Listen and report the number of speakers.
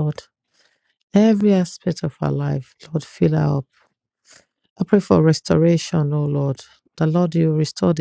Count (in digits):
1